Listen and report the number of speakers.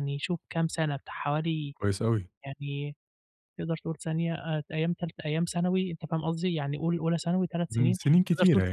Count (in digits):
2